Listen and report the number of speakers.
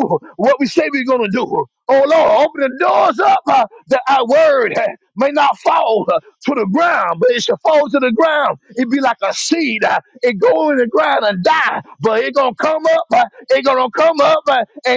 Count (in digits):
1